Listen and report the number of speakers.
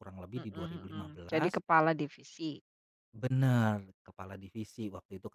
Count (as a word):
two